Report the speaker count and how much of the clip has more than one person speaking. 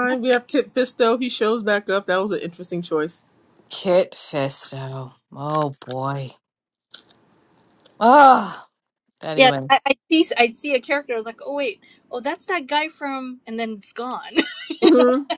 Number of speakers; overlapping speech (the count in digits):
3, about 6%